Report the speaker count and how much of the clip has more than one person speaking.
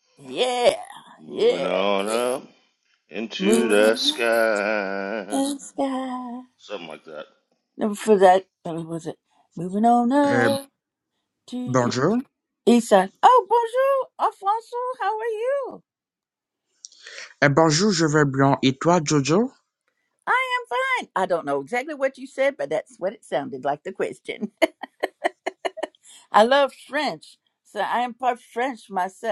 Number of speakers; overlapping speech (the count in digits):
3, about 7%